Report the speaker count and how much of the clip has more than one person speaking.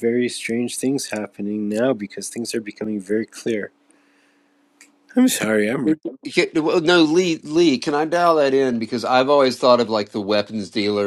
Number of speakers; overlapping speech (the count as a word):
two, no overlap